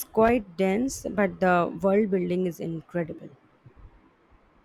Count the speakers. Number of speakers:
1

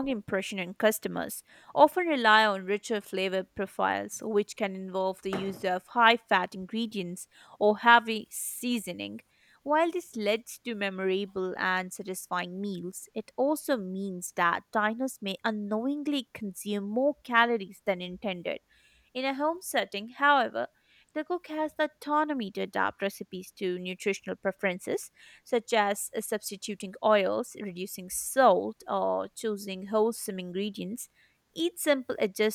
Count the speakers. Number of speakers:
1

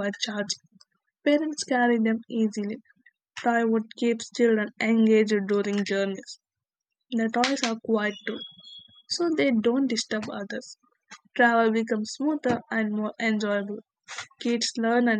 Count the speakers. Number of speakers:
1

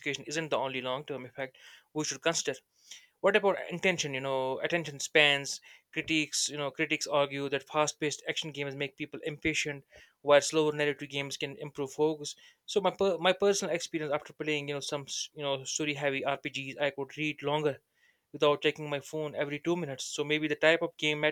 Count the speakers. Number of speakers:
1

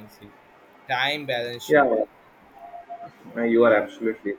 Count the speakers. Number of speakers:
2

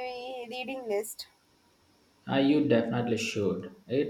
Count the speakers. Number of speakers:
2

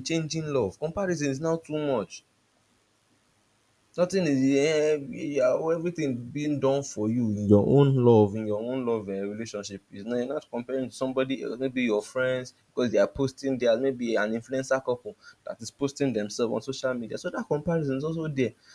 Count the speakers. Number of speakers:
1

